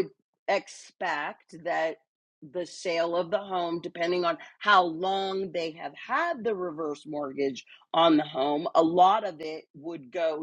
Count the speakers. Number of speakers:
one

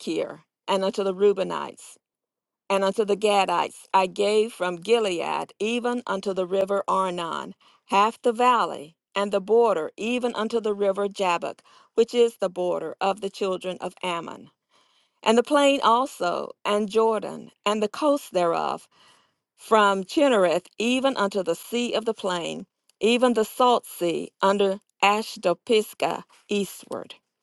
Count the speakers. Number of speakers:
one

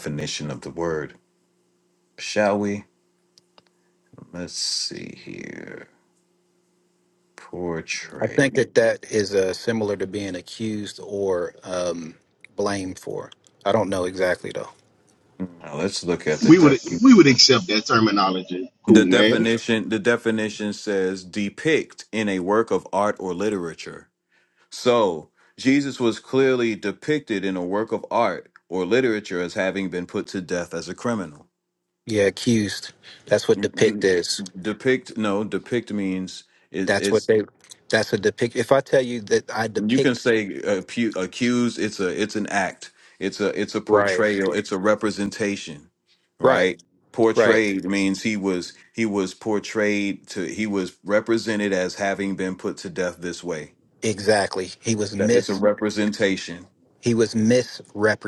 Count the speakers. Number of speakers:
three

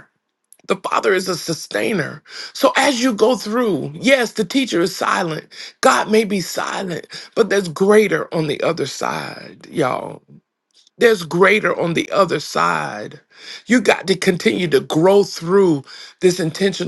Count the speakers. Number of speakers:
one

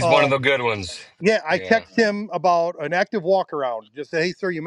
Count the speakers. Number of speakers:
two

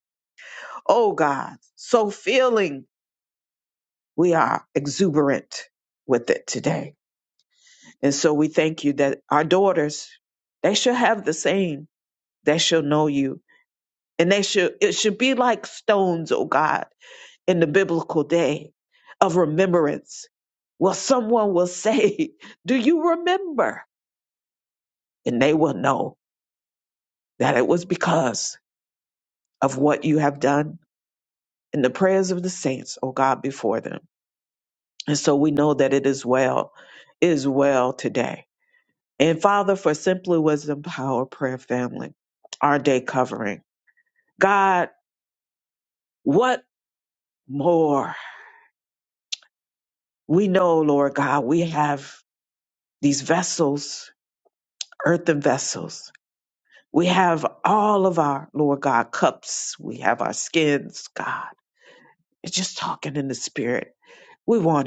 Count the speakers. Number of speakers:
one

